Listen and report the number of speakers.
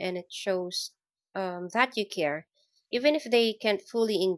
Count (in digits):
1